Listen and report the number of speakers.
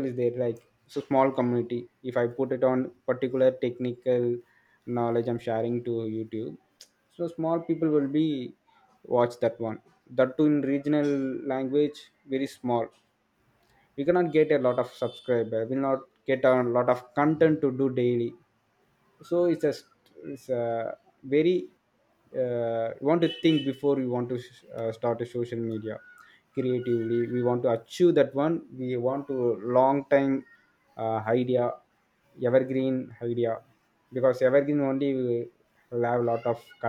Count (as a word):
one